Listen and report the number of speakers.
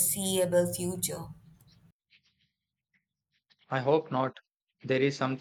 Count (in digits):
2